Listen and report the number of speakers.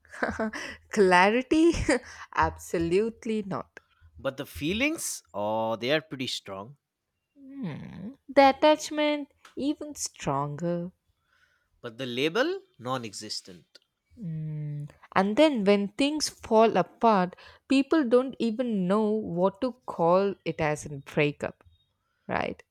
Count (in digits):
2